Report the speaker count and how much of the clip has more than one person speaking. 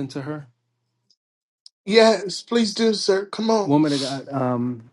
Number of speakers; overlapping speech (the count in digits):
2, about 2%